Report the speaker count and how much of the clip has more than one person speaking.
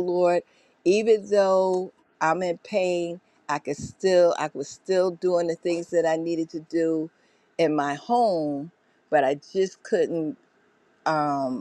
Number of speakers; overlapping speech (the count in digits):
1, no overlap